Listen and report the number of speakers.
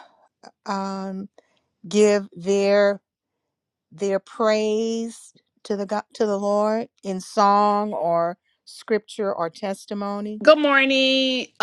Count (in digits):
2